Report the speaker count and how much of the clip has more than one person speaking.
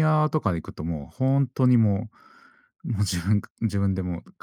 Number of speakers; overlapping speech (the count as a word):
one, no overlap